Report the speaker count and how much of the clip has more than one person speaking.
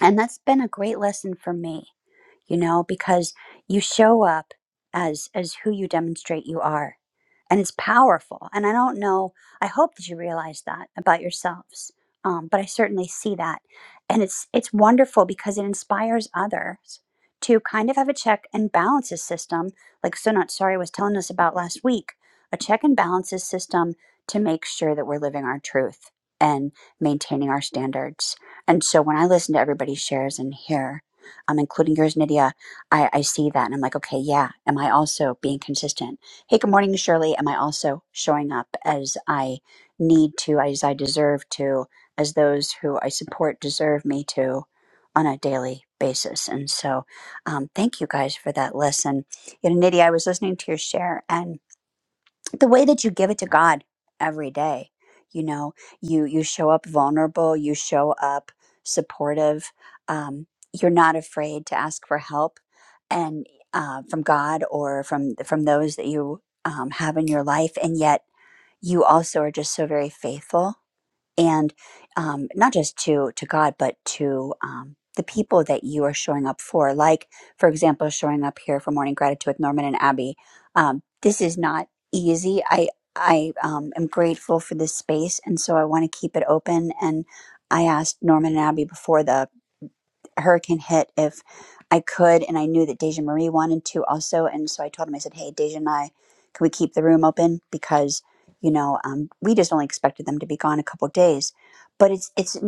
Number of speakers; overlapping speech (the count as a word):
one, no overlap